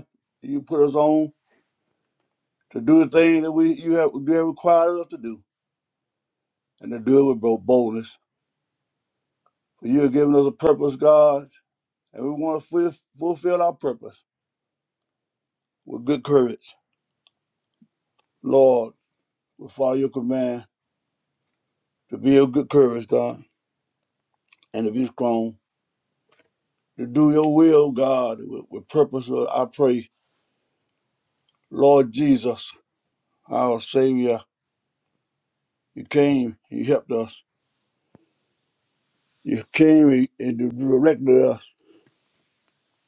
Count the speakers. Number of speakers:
1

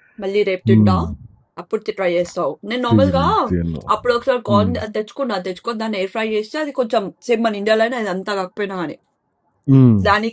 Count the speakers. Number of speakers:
2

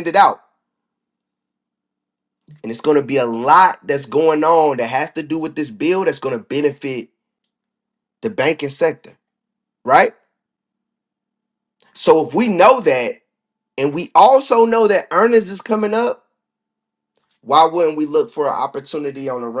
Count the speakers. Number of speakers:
1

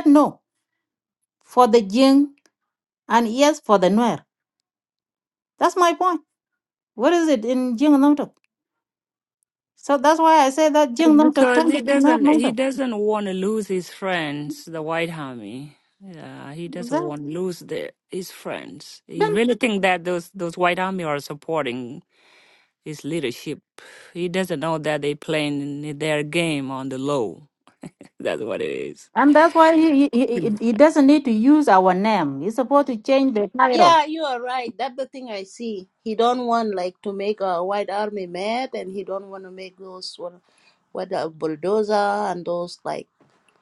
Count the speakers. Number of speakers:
3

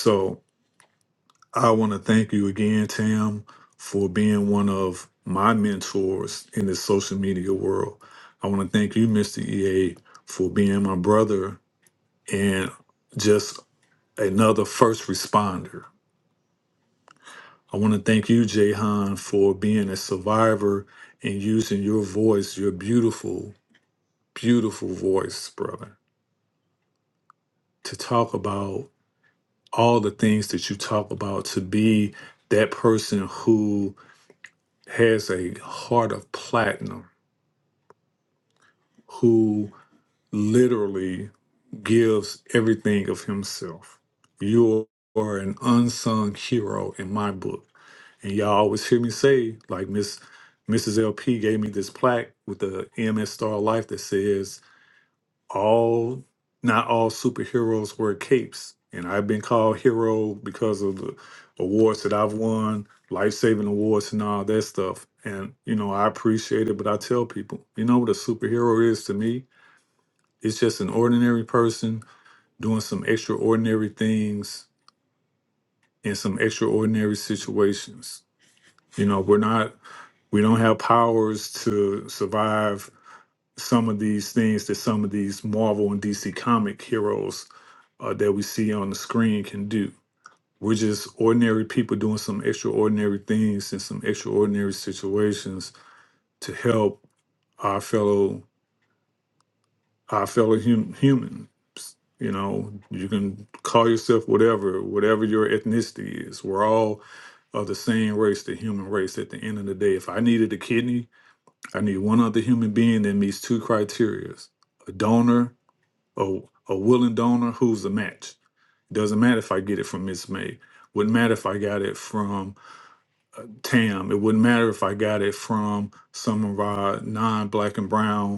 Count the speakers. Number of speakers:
1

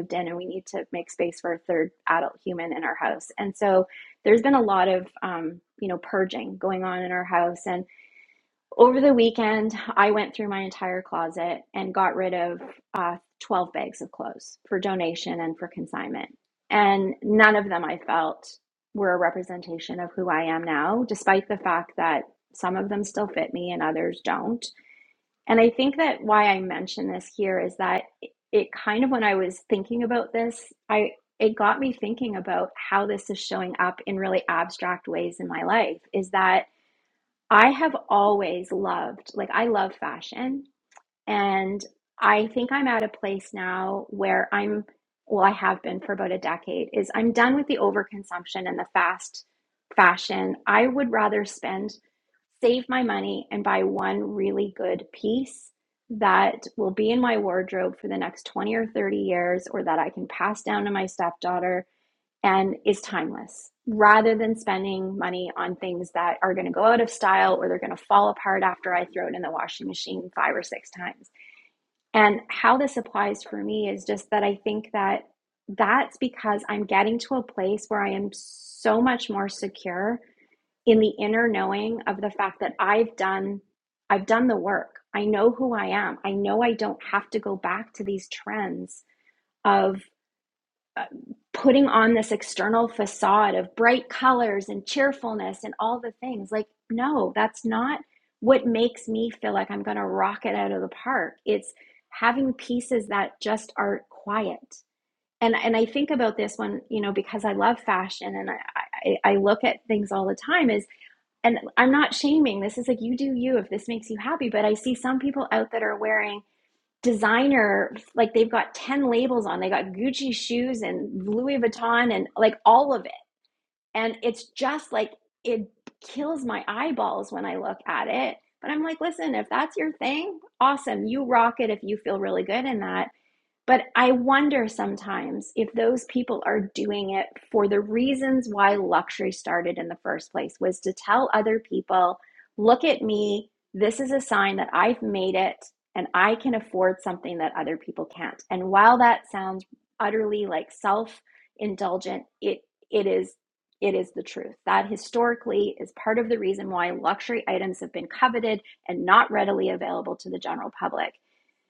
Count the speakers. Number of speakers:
1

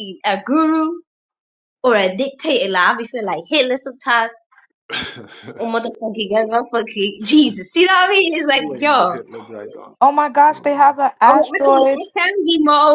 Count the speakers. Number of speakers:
3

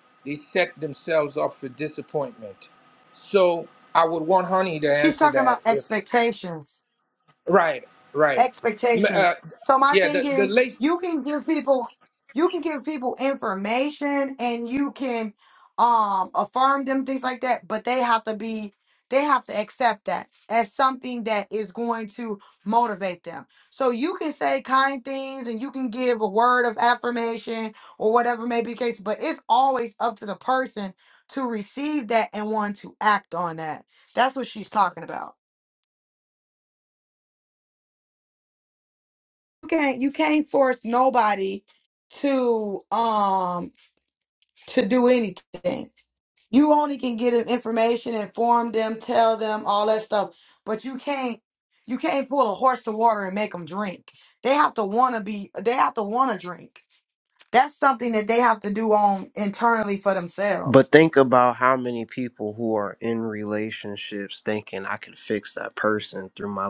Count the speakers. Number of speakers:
3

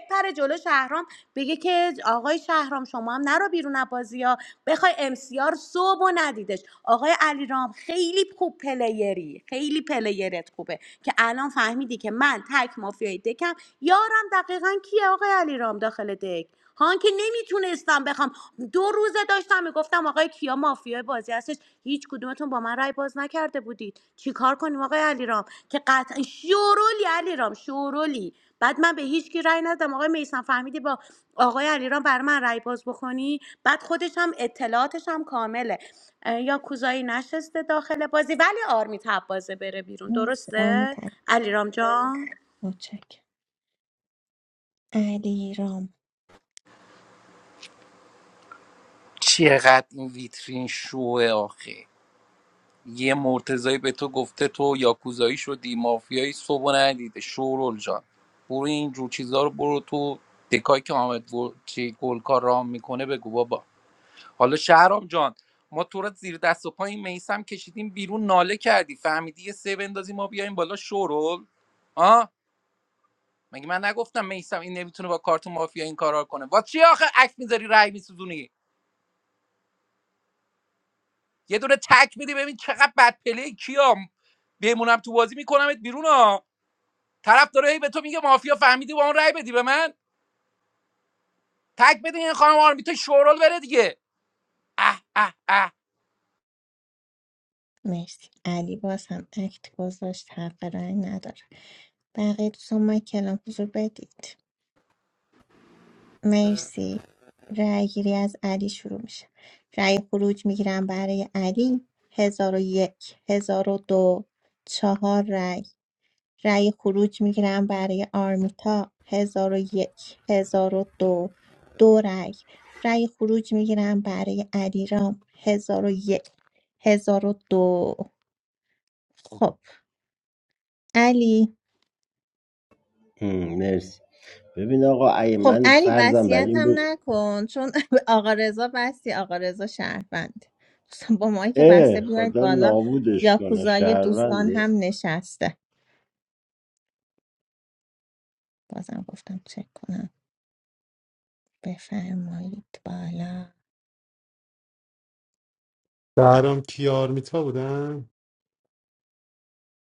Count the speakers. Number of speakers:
5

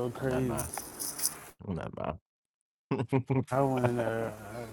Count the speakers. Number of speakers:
2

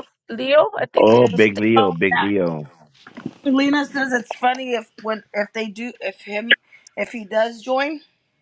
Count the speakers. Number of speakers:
3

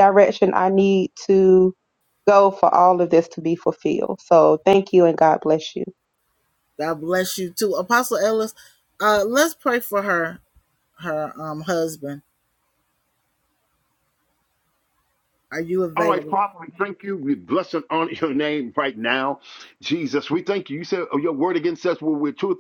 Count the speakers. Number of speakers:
3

